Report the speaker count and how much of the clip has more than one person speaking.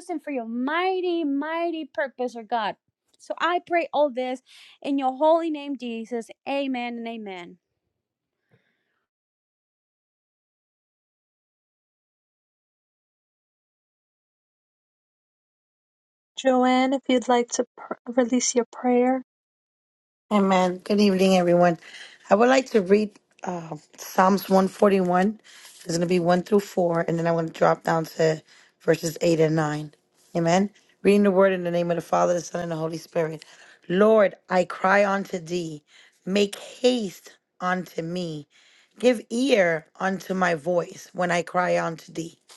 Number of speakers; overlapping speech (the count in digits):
3, no overlap